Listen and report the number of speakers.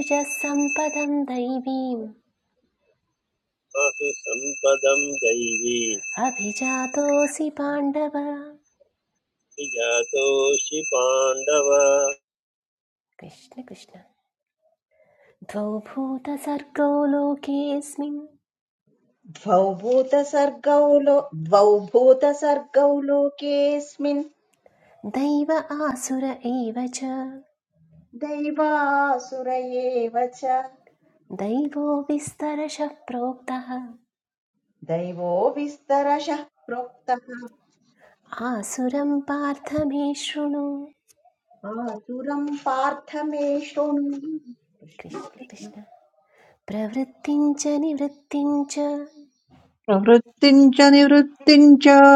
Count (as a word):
four